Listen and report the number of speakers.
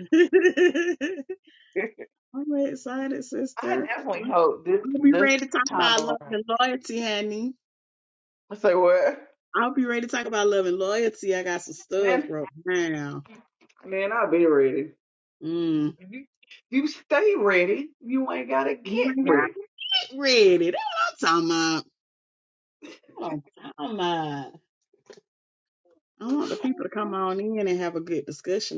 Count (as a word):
two